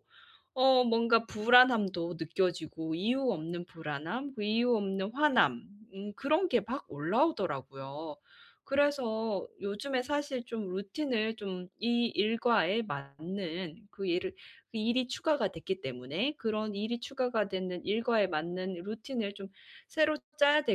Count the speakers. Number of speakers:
one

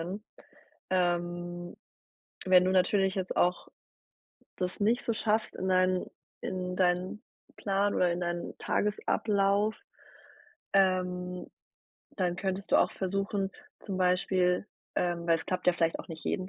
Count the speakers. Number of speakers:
one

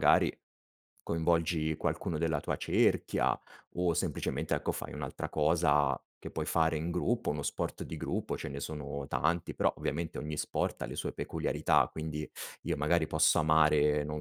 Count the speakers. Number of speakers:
one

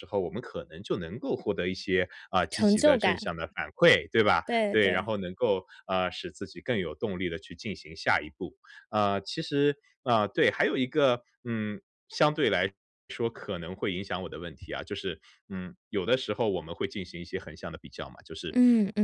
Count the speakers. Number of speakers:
two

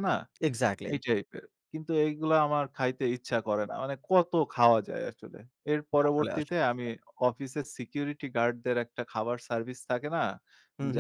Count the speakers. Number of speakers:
two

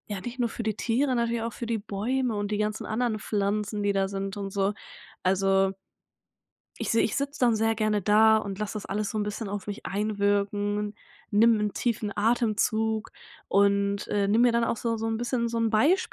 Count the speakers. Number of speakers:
one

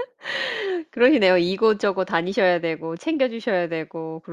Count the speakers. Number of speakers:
one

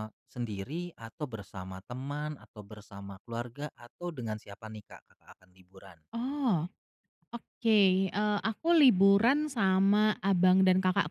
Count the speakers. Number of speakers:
two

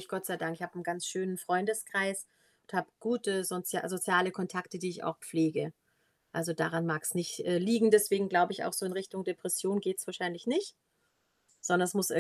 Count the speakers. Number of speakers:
one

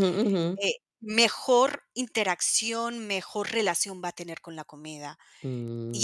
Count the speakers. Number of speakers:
two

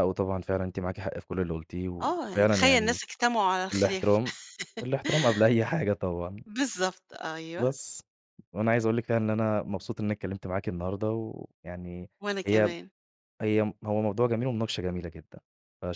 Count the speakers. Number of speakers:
two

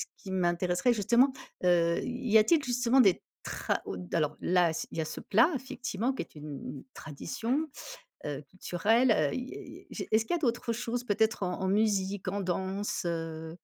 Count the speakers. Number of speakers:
one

